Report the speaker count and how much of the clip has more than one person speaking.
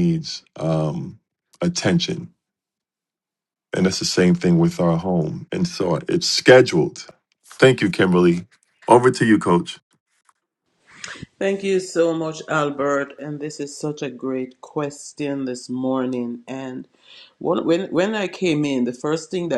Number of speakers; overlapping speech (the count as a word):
two, no overlap